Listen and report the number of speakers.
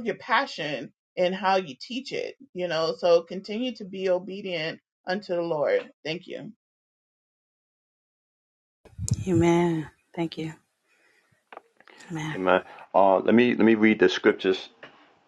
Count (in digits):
3